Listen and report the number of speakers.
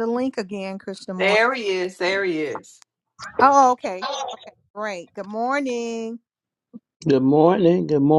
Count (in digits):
3